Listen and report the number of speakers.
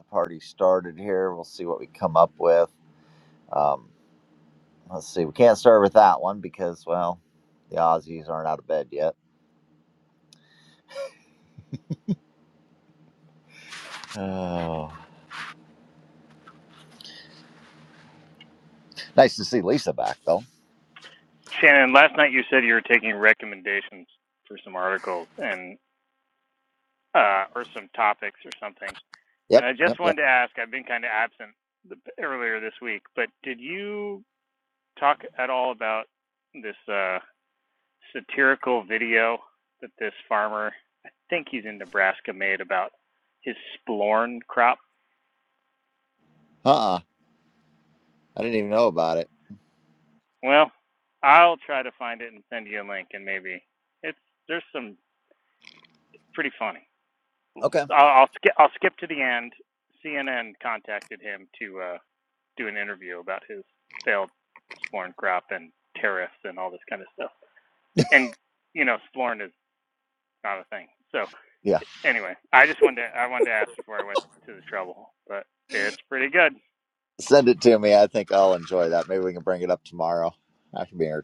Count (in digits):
2